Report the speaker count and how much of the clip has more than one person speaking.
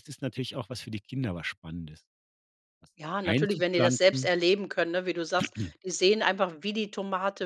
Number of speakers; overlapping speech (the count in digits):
2, about 14%